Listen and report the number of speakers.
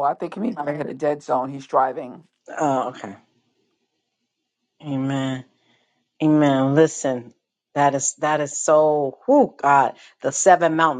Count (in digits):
2